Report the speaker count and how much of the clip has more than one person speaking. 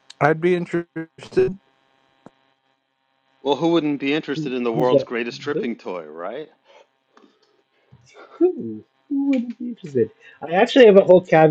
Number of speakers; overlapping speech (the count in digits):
3, about 8%